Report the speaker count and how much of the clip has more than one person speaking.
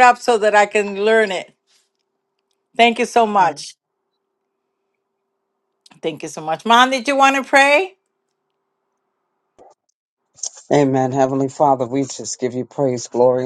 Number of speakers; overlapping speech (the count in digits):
2, no overlap